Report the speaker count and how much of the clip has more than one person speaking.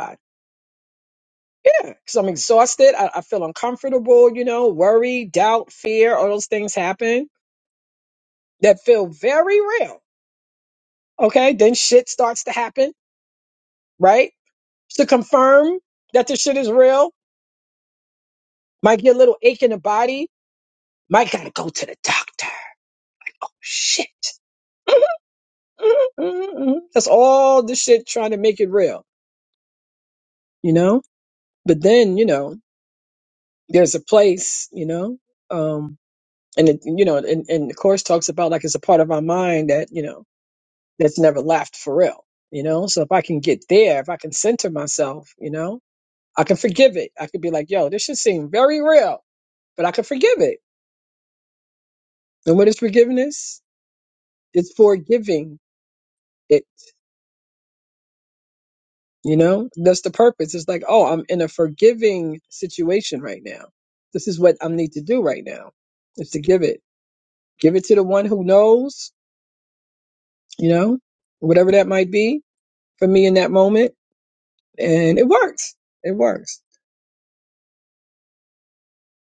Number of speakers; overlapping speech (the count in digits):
1, no overlap